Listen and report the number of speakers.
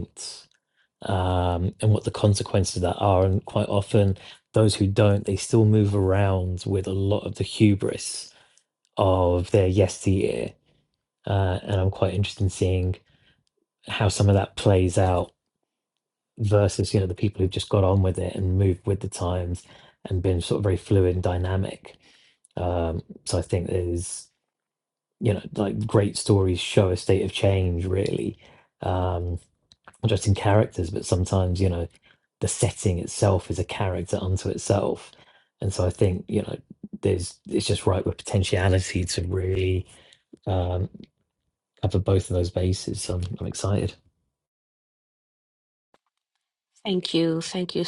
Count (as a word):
two